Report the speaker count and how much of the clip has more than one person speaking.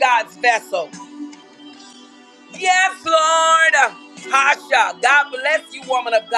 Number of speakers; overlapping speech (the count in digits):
1, no overlap